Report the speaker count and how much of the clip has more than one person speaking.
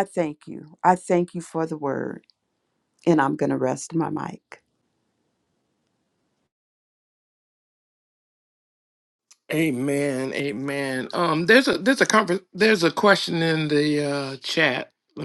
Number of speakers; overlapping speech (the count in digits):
2, no overlap